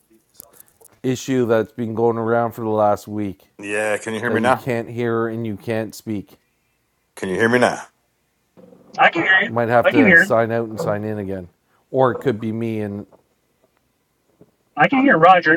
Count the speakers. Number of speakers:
3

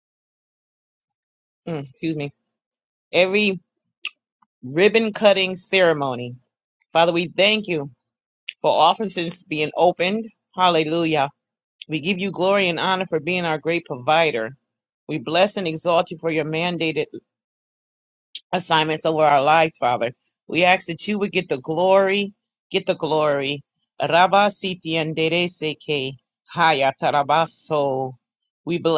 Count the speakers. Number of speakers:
1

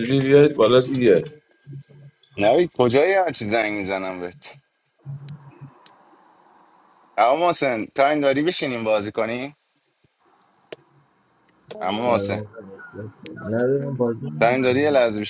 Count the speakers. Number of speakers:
3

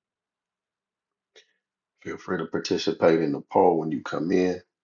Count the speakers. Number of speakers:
1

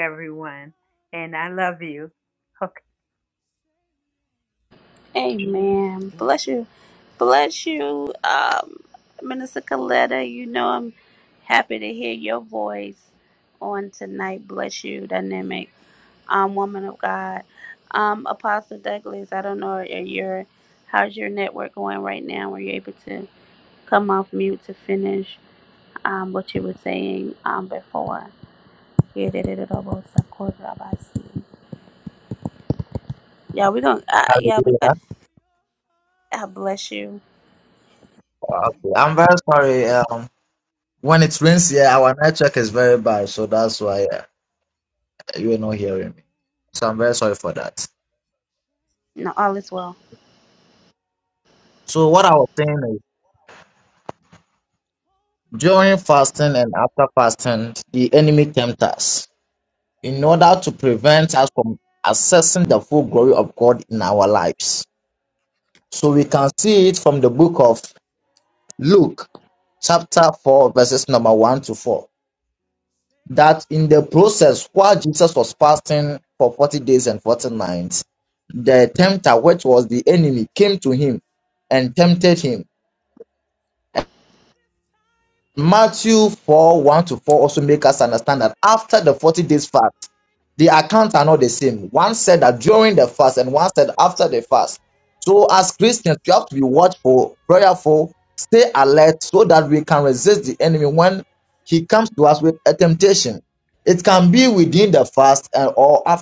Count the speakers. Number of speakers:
3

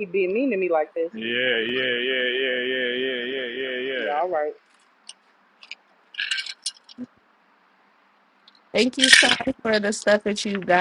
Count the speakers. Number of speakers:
3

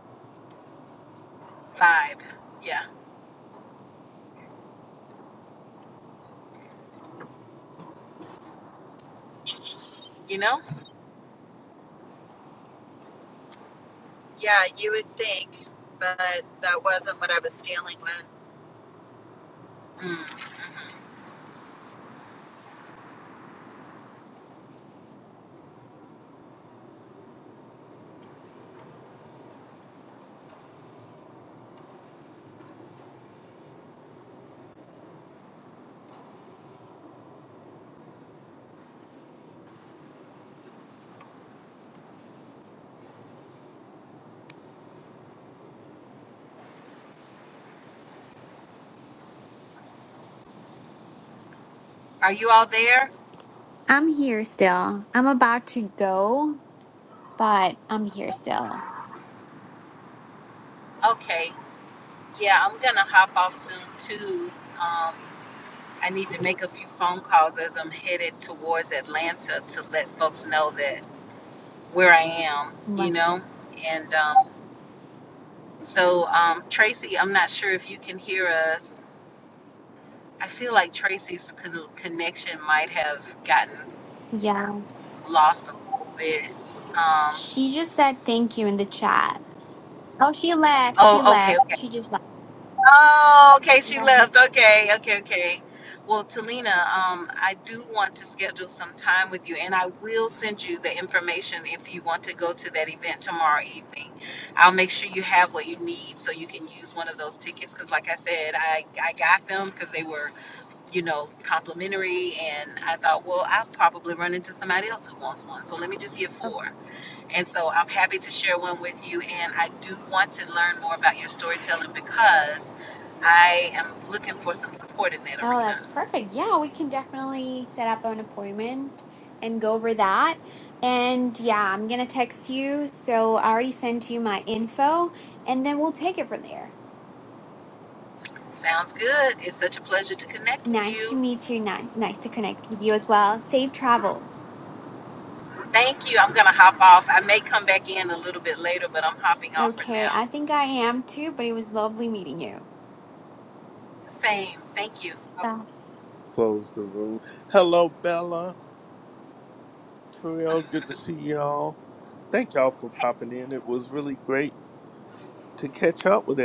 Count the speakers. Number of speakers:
4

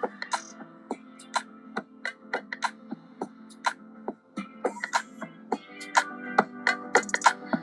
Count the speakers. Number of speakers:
0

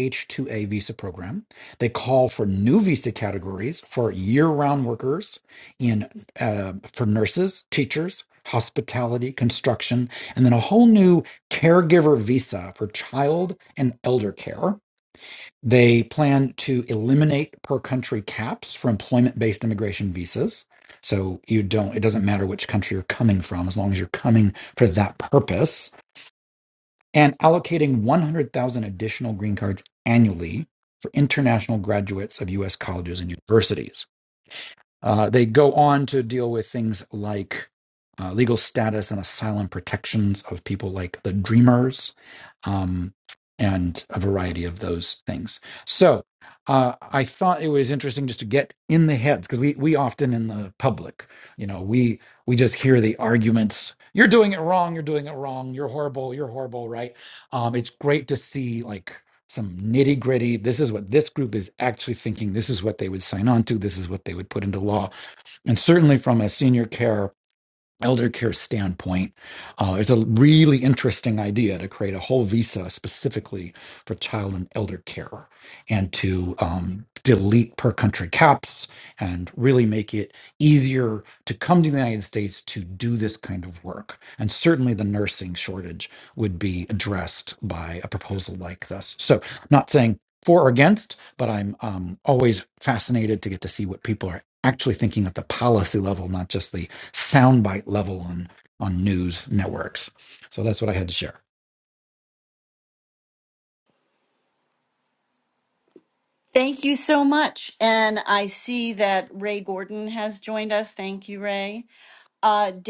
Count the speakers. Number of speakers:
2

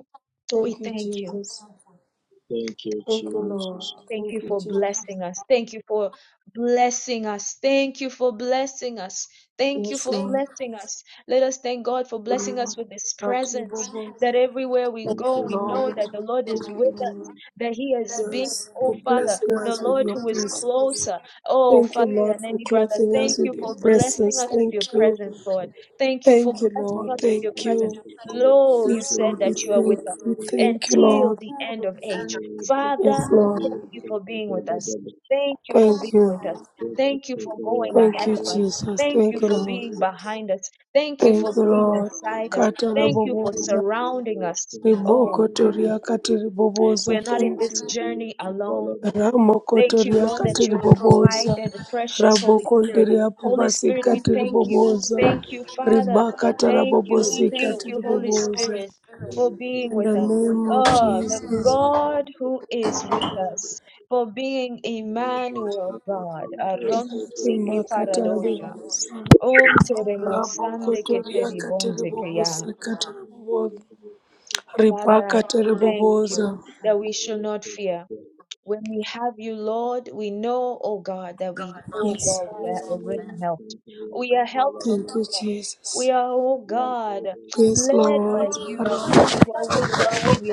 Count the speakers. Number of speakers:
3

